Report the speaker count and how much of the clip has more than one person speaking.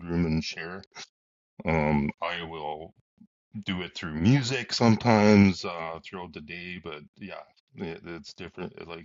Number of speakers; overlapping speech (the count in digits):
1, no overlap